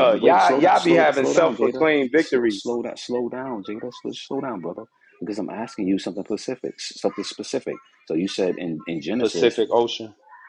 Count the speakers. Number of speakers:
two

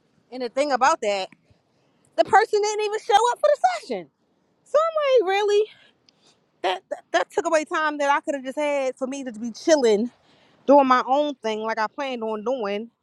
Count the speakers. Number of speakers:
one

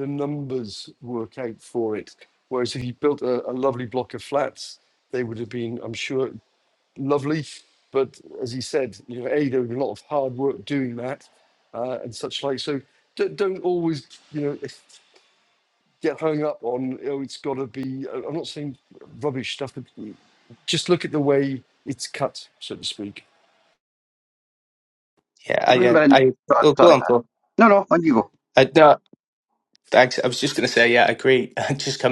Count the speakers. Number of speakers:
three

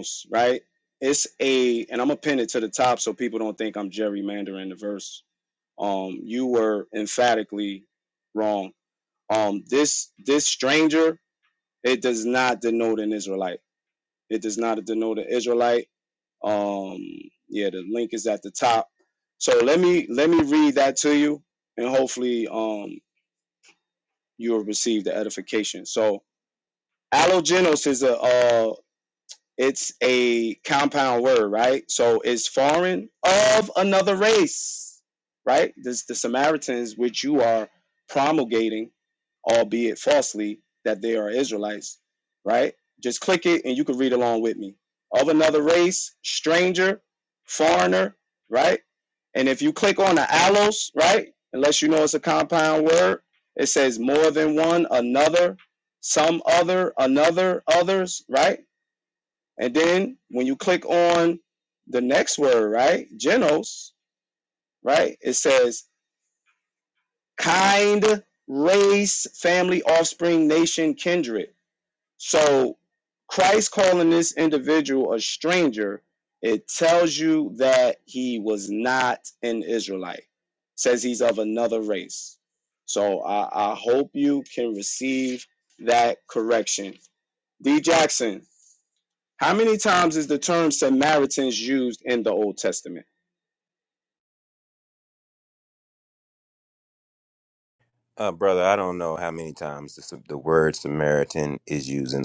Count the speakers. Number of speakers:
two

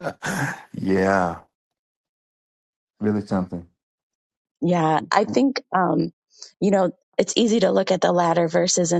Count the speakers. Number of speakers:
two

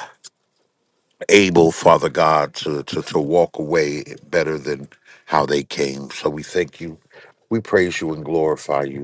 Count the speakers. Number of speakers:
one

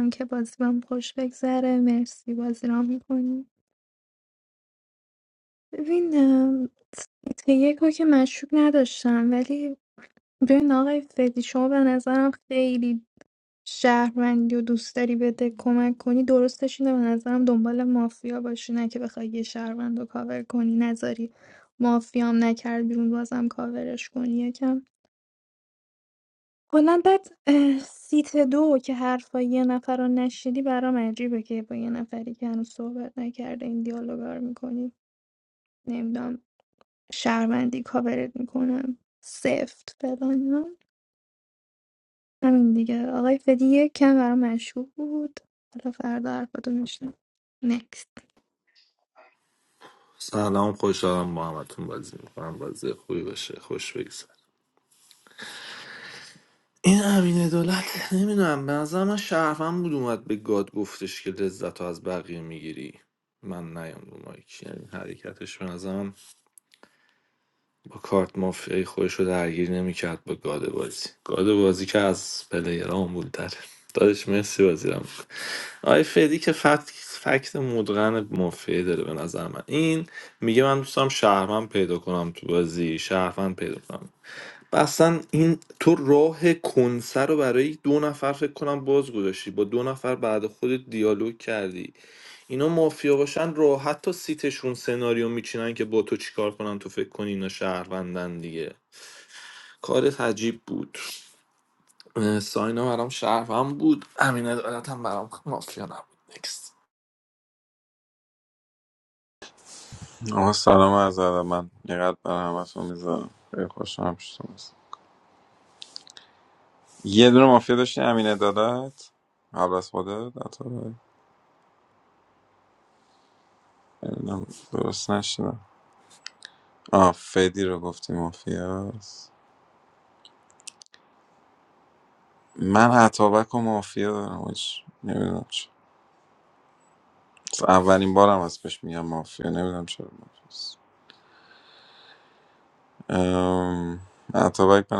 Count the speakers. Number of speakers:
three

